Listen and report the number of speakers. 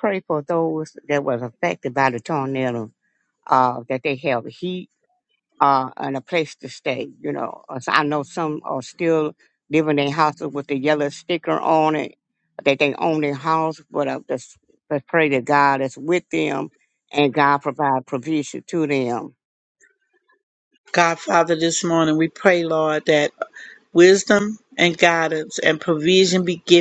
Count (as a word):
two